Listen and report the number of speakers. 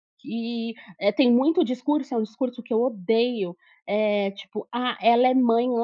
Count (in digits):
1